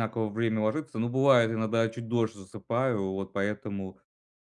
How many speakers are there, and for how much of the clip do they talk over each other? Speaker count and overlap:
1, no overlap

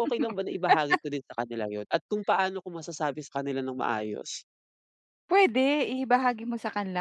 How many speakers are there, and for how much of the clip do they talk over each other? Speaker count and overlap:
2, no overlap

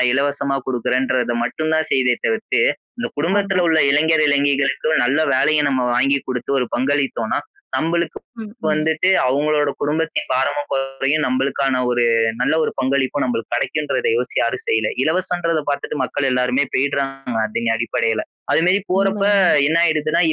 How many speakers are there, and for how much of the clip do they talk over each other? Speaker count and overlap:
2, about 4%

